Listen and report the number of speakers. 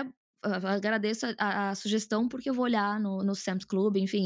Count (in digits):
1